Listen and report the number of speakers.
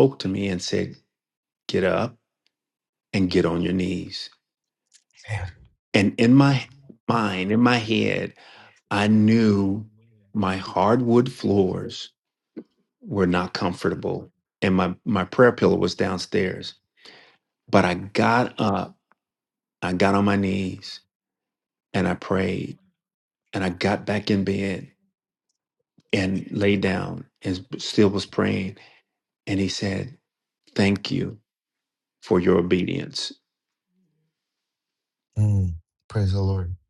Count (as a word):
two